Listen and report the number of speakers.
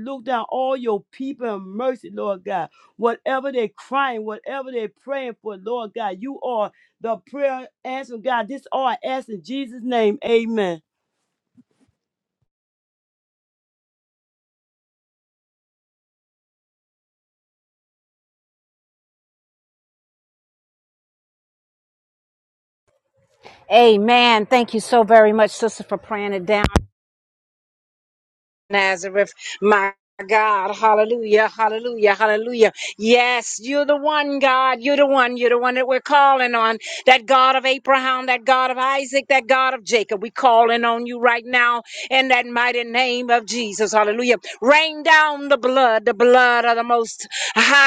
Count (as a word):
two